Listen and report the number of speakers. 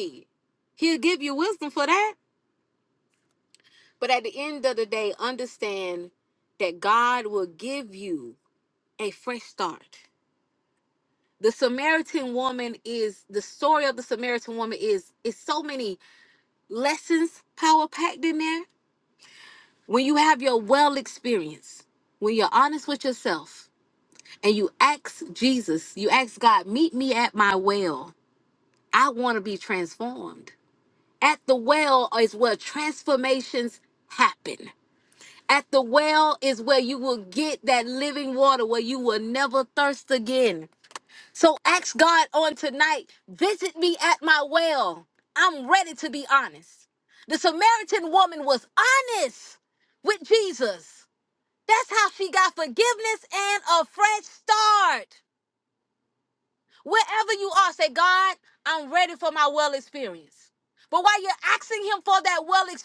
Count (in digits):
1